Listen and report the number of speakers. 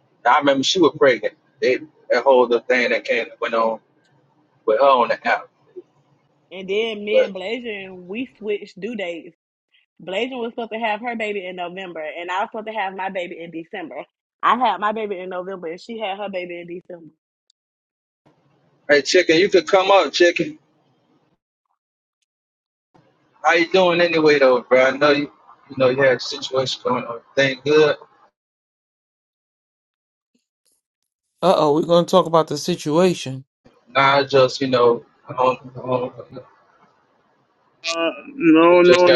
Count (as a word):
four